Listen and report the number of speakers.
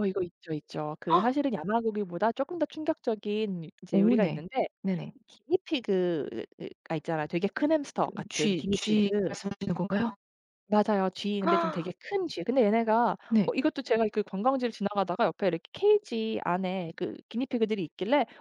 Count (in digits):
2